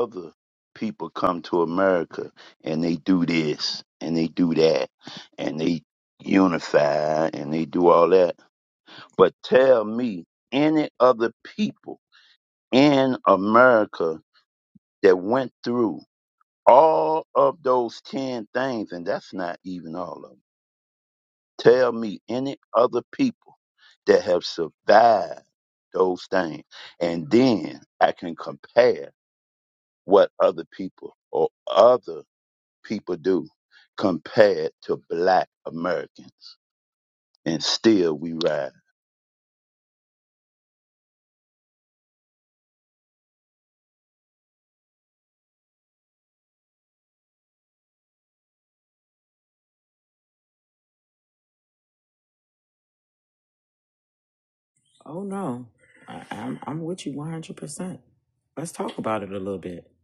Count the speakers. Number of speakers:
2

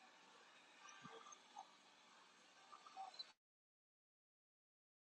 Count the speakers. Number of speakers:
0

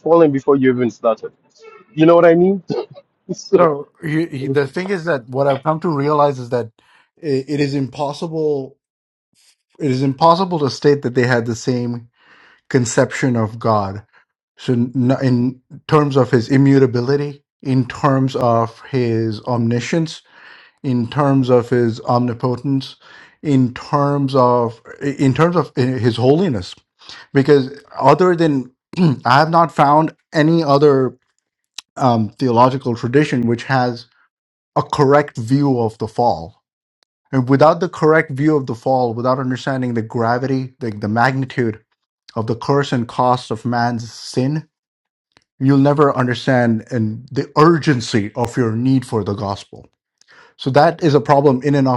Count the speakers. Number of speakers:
2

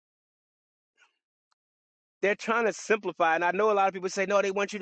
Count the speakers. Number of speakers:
1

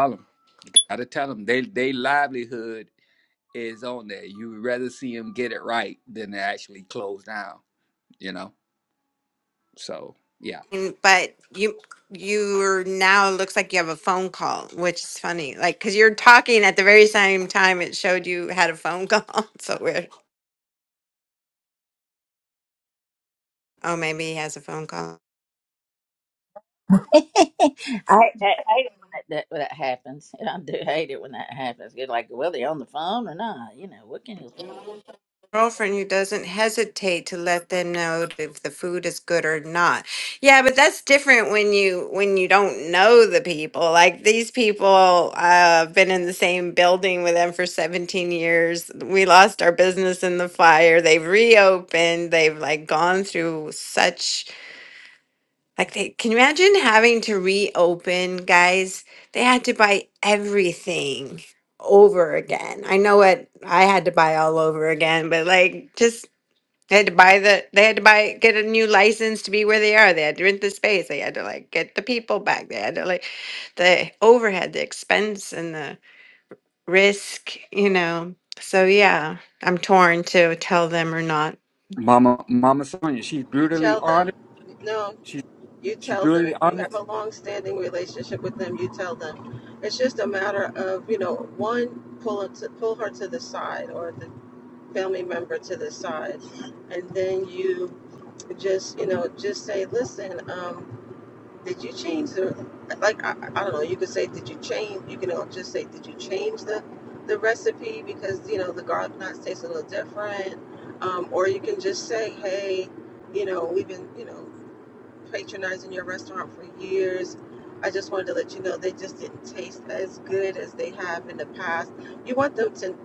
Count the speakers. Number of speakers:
4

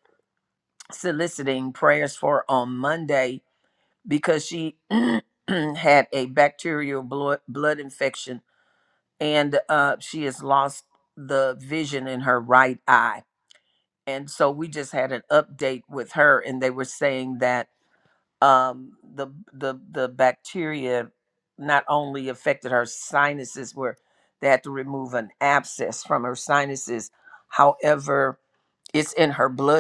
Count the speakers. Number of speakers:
1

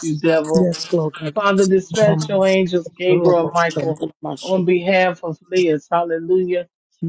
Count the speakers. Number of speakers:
2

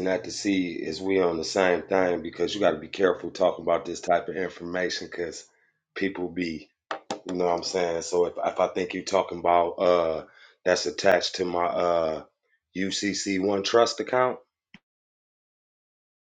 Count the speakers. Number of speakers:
1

